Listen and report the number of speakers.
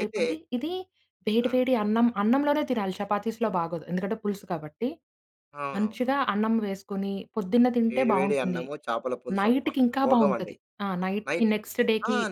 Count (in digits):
2